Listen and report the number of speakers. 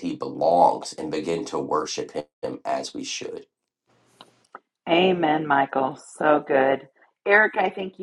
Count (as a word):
two